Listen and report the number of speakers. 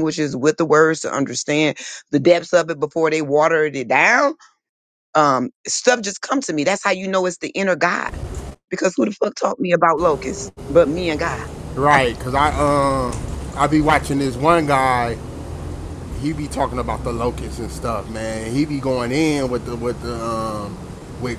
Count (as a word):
two